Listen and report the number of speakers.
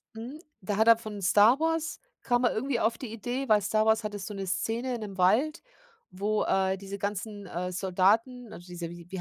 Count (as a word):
one